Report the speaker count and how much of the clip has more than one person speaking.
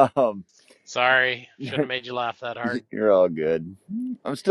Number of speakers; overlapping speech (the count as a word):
two, no overlap